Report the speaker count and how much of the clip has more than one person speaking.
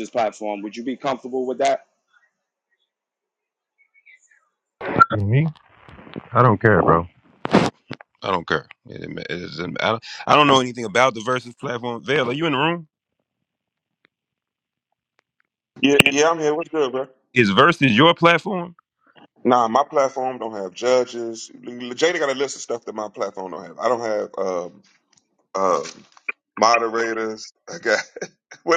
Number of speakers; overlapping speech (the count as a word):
three, no overlap